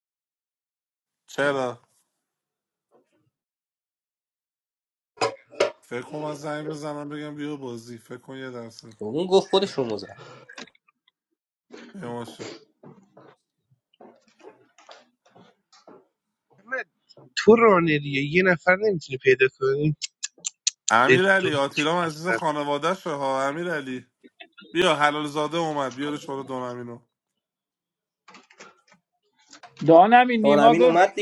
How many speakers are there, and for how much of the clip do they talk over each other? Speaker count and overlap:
four, about 5%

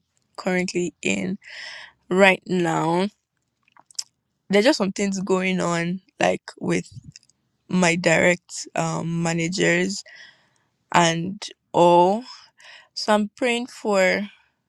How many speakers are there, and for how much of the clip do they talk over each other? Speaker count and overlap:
one, no overlap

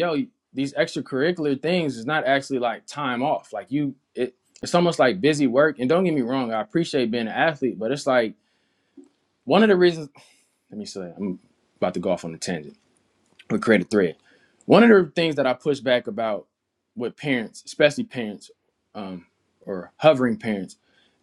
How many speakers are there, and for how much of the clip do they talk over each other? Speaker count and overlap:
one, no overlap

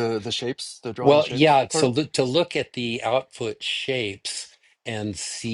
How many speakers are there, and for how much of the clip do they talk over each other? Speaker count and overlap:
two, about 16%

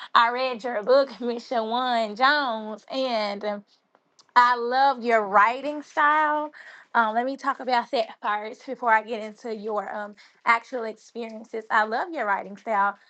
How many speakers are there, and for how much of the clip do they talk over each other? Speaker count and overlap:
one, no overlap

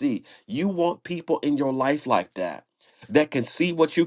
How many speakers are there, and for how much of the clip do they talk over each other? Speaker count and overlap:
one, no overlap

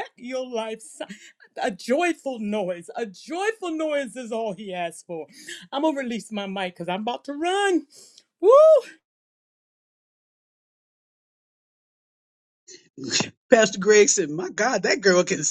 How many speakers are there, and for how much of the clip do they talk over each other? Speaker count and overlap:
two, no overlap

